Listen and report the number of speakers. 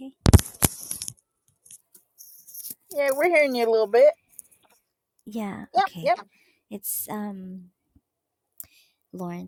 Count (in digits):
2